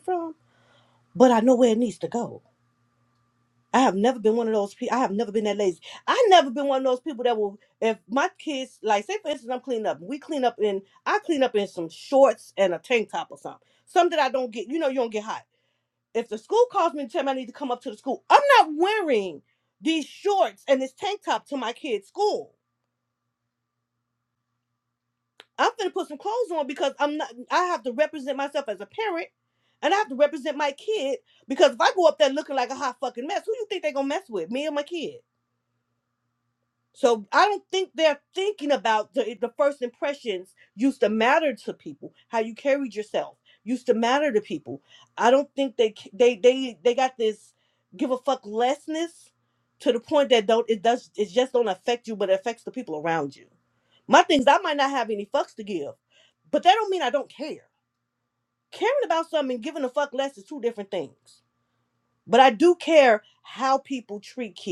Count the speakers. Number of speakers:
one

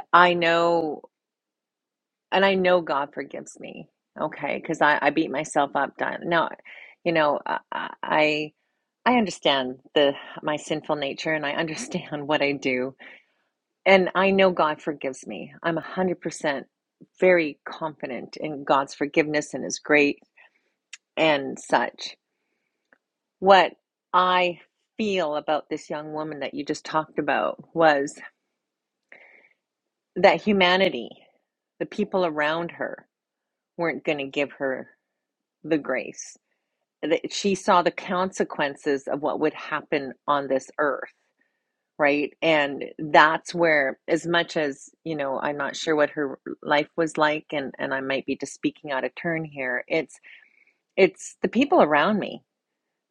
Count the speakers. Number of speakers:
one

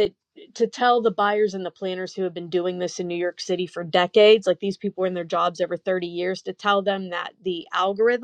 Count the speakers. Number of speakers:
one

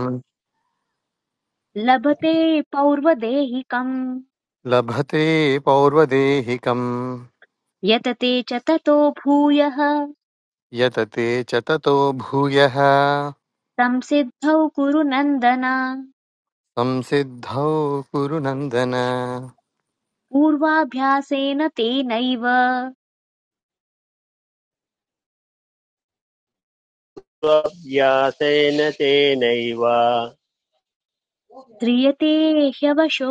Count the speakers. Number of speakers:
three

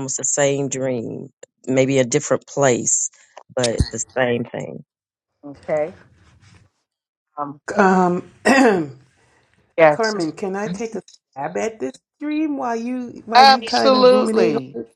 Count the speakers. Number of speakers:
three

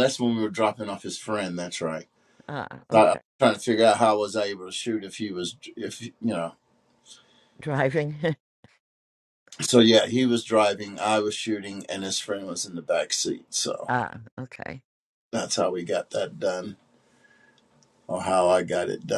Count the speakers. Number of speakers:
two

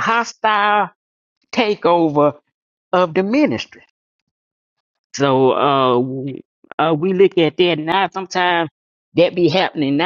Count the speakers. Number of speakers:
one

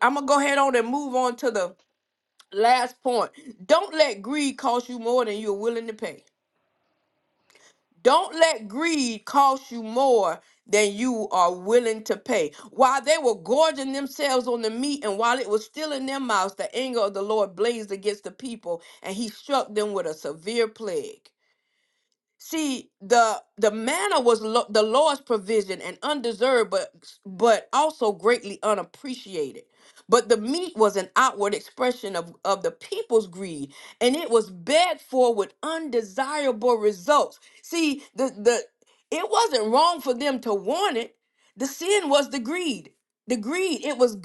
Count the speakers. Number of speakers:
one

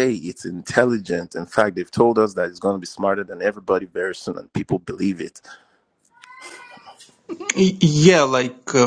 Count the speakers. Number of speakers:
two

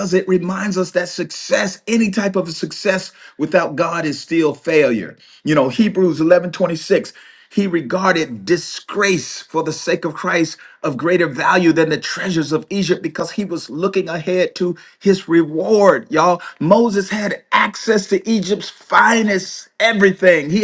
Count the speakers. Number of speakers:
one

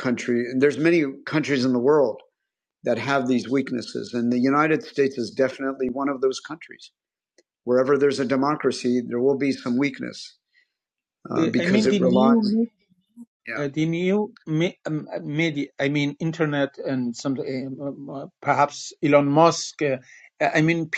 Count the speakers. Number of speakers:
two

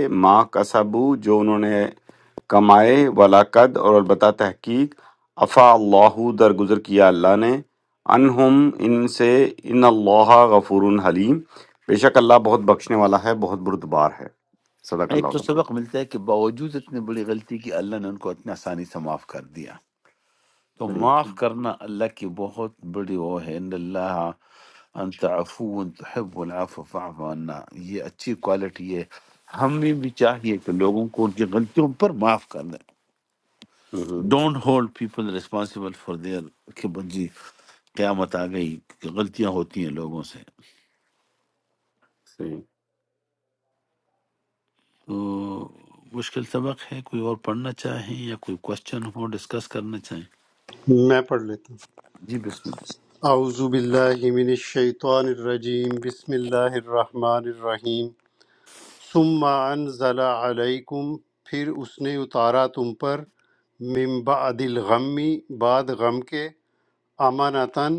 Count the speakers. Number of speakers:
three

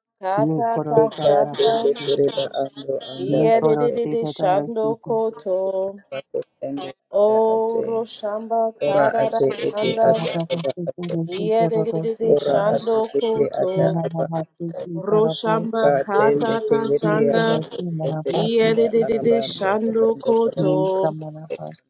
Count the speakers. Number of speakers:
three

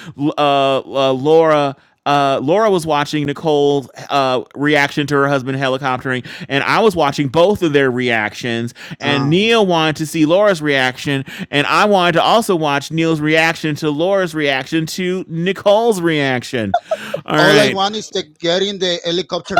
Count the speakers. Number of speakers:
two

